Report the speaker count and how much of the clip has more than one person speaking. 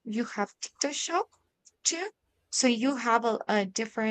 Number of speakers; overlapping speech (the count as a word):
one, no overlap